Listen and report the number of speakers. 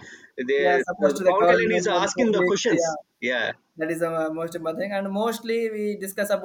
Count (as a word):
two